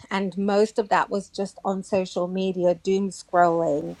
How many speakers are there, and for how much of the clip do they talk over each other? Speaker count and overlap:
1, no overlap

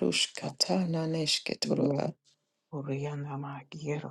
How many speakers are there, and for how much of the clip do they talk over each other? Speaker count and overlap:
2, about 12%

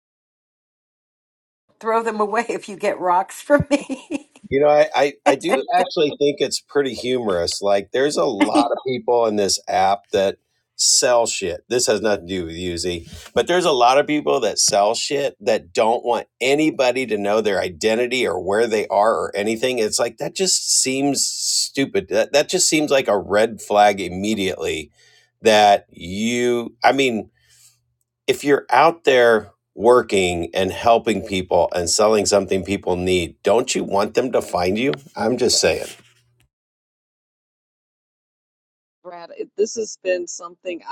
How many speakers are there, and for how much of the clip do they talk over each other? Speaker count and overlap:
3, no overlap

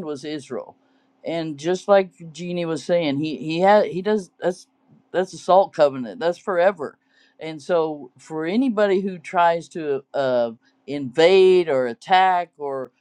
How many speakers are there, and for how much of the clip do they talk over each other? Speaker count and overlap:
1, no overlap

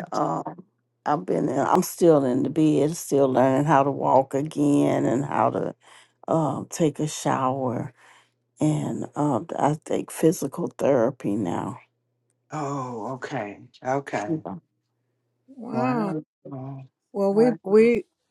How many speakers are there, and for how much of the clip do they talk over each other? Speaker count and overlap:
3, about 3%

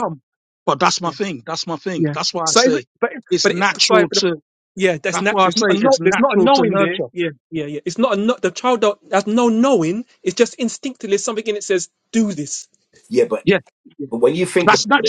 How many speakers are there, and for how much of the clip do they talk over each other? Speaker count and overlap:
3, about 27%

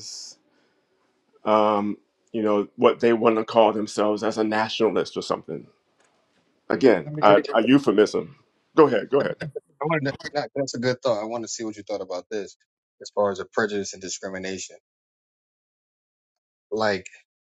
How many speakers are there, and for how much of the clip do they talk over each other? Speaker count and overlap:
2, about 2%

